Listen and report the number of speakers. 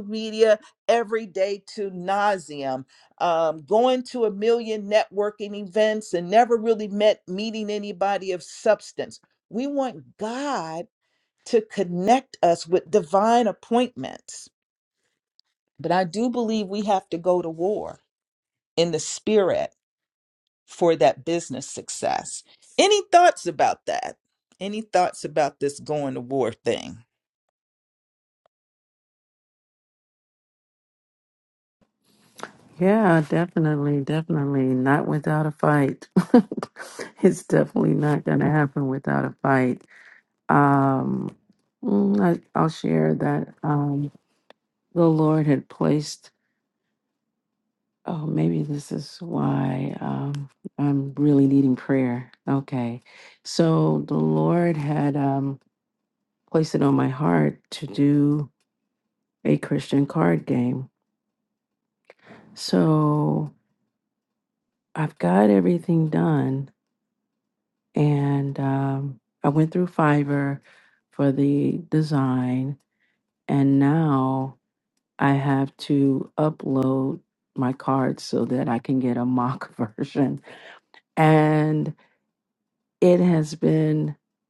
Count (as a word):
two